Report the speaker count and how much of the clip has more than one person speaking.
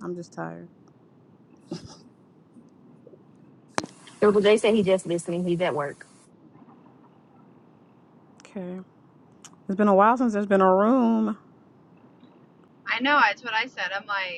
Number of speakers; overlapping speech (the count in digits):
3, no overlap